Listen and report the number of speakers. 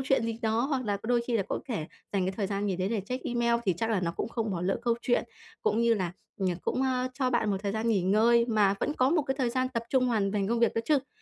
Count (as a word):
one